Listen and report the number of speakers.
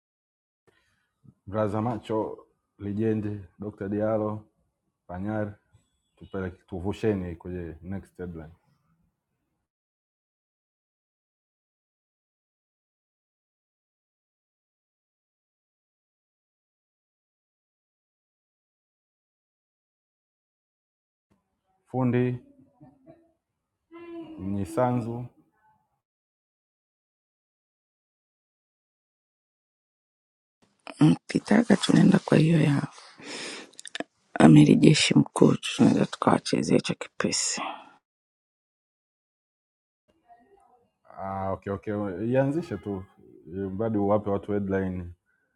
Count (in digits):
2